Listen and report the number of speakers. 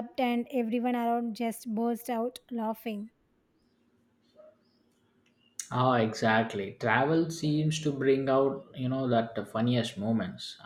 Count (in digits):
2